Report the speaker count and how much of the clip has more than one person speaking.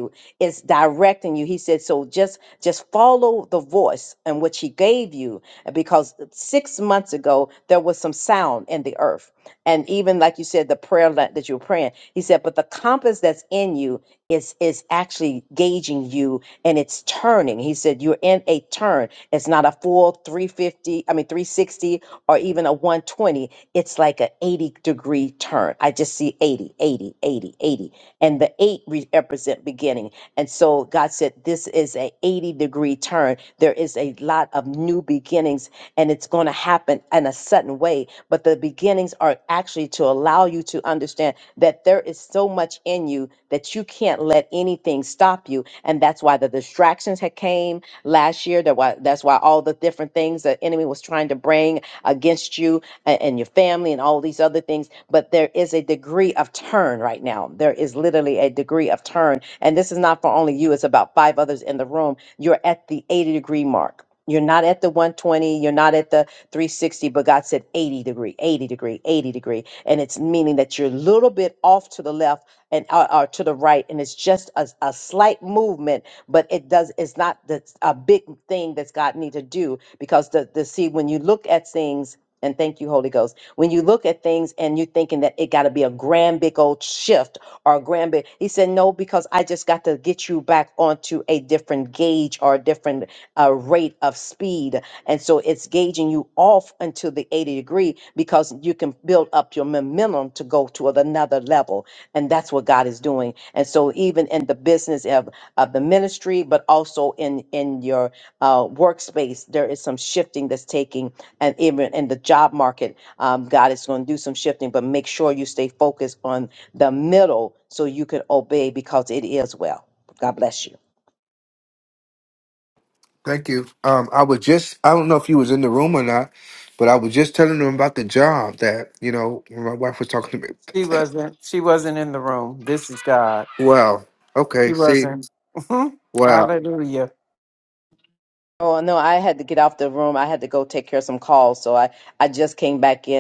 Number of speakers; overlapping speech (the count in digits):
3, about 1%